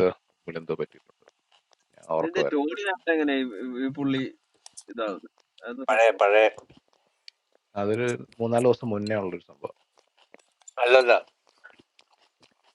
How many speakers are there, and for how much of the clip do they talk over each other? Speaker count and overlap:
3, about 5%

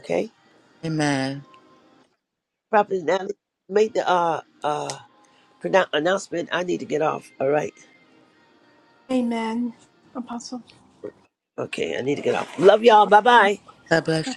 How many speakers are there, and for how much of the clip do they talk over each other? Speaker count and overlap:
3, about 2%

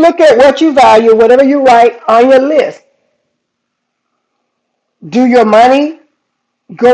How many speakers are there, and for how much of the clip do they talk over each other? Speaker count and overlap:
1, no overlap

